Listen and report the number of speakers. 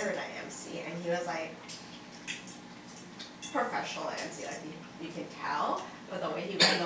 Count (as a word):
one